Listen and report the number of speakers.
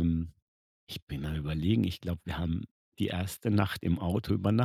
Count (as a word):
one